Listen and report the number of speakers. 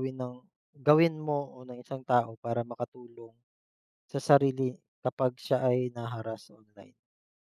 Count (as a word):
one